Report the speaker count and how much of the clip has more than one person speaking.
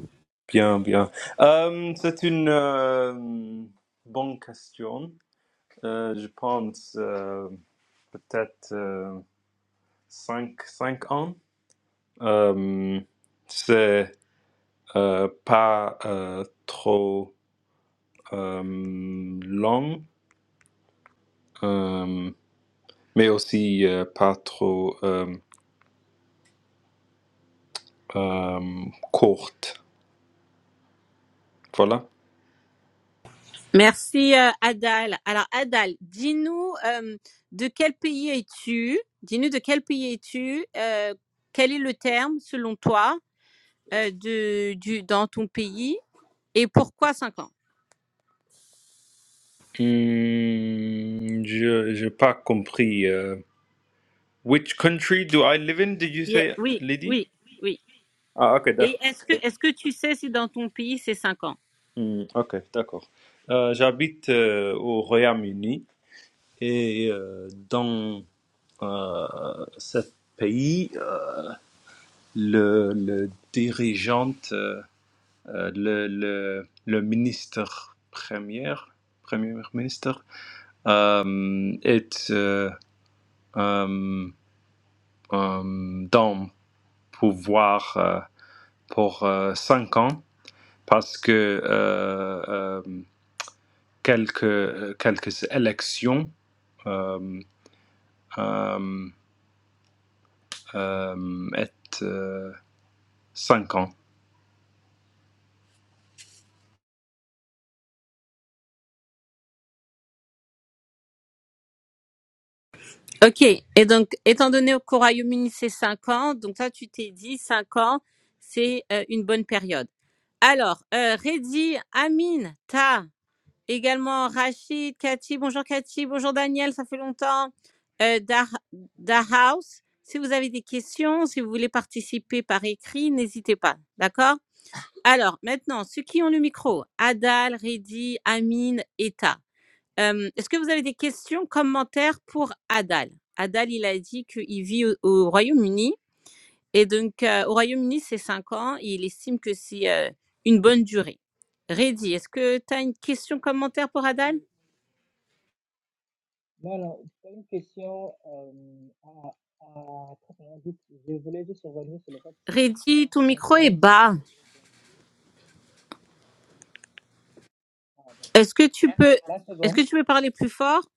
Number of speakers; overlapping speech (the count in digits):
3, about 1%